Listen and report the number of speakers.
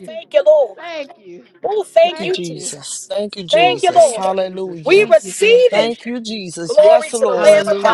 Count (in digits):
3